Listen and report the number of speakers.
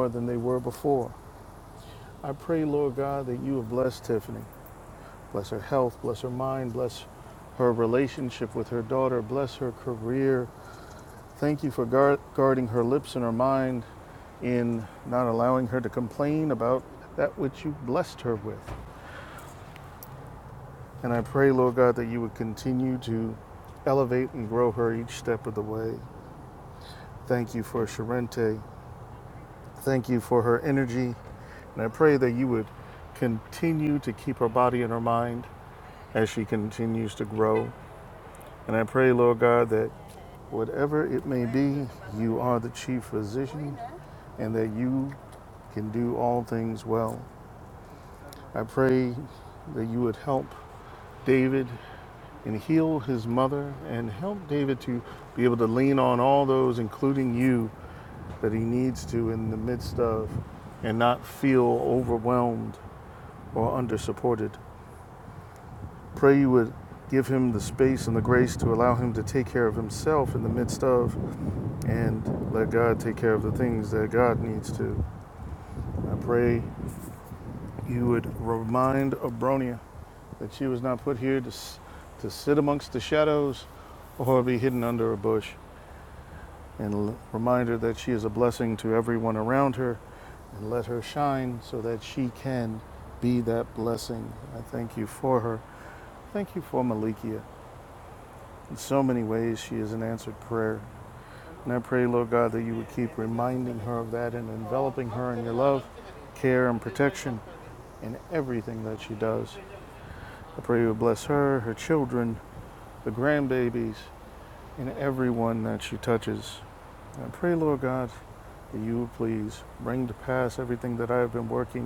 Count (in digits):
1